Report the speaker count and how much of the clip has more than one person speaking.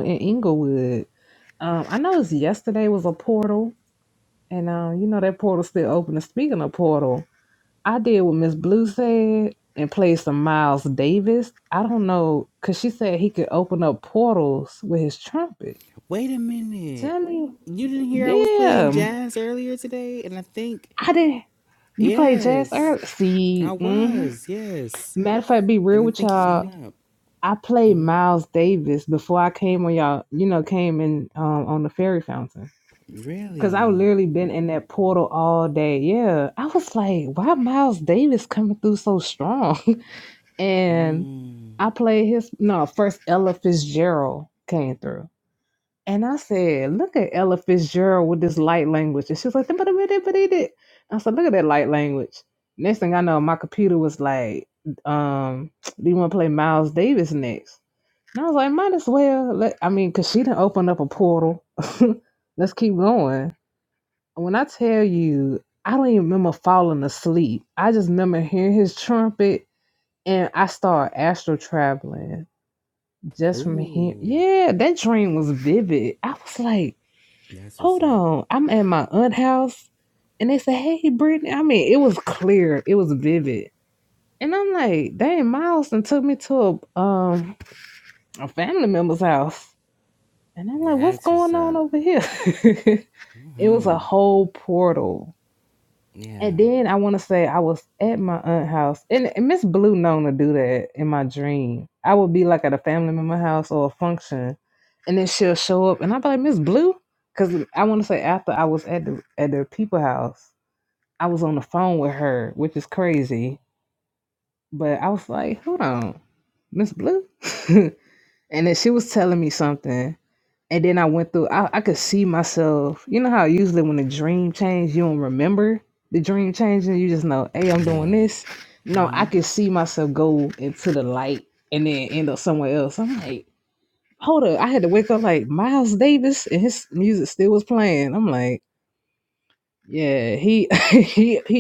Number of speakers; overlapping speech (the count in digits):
2, about 6%